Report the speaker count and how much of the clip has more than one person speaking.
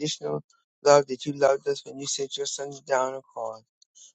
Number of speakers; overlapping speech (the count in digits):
1, no overlap